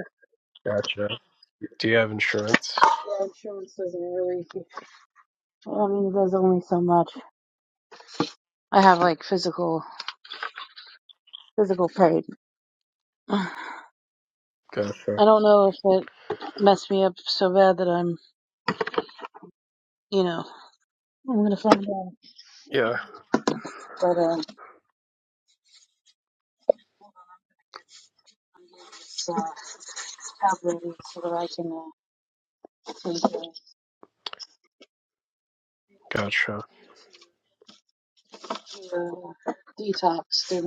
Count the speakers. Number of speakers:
two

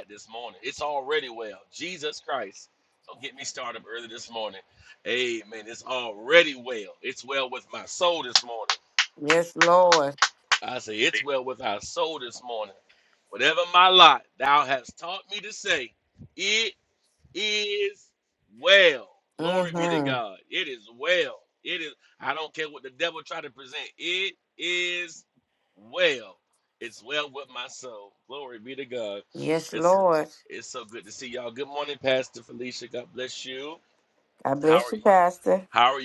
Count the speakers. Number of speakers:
two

